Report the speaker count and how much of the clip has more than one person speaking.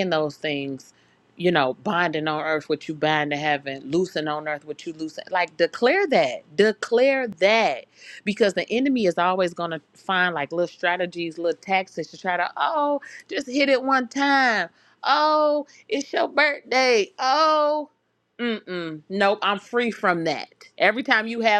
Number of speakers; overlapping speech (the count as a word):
one, no overlap